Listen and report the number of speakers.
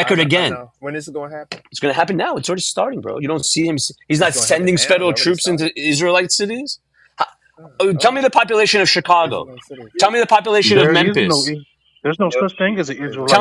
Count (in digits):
3